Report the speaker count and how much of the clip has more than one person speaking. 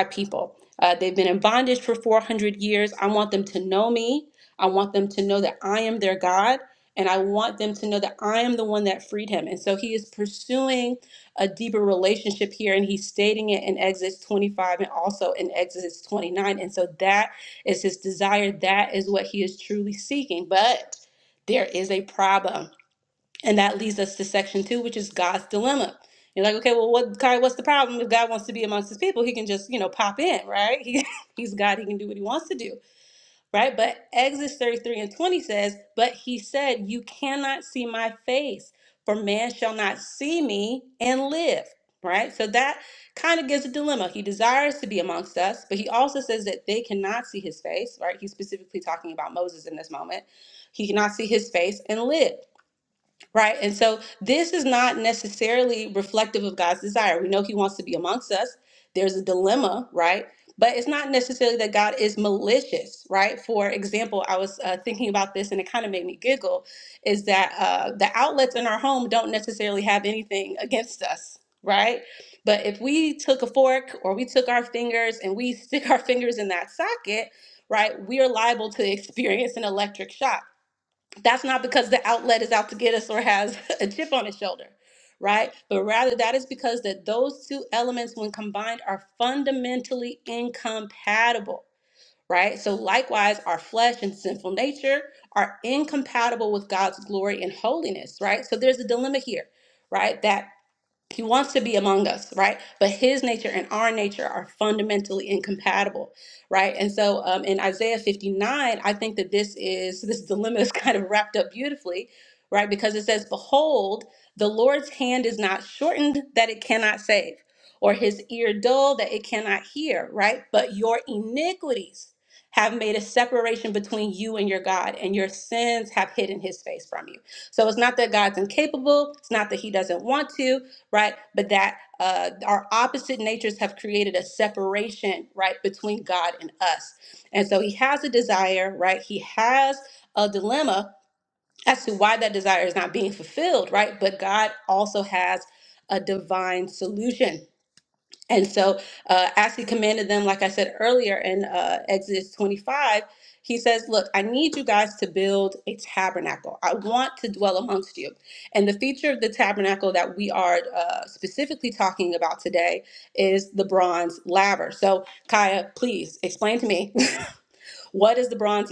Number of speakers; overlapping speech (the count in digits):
1, no overlap